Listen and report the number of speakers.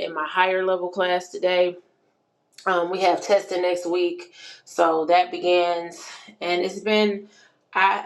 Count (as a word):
one